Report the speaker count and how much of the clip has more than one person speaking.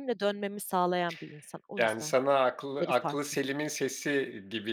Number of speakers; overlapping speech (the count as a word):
two, about 19%